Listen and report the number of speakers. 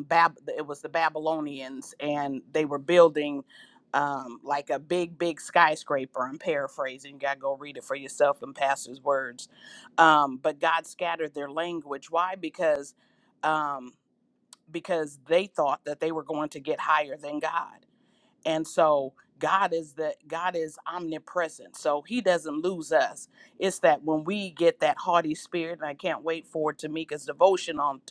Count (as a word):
one